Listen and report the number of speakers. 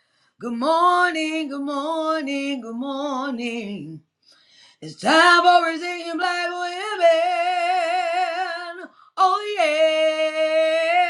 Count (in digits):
1